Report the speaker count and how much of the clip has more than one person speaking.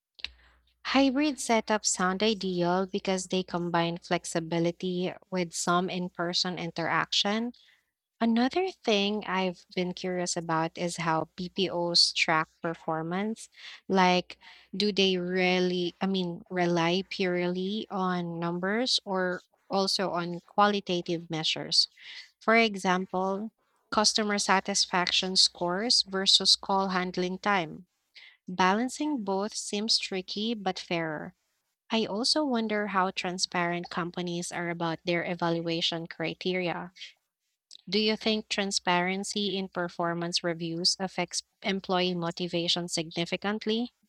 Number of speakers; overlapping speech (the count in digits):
1, no overlap